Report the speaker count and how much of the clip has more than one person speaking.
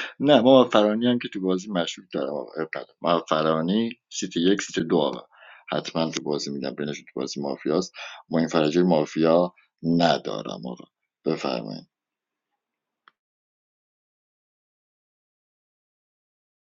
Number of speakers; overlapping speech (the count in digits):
1, no overlap